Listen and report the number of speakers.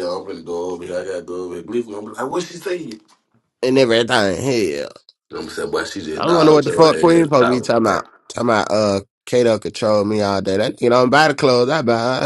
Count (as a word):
two